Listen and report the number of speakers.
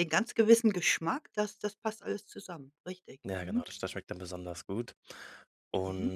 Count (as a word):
two